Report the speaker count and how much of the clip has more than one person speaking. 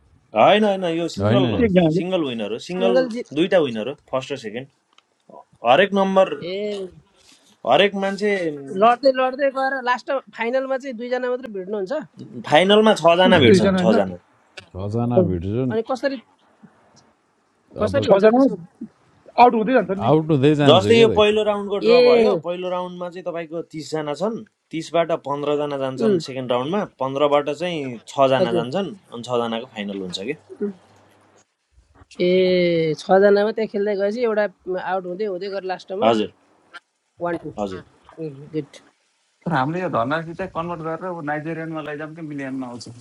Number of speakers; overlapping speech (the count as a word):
five, about 8%